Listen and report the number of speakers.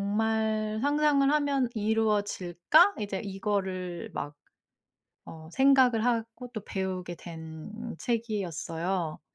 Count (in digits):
1